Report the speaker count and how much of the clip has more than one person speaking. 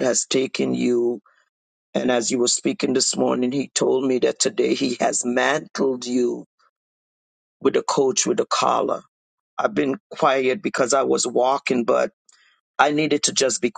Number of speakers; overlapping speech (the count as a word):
one, no overlap